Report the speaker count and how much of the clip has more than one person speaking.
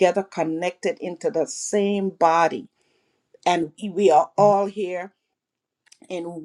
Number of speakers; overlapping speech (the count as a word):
one, no overlap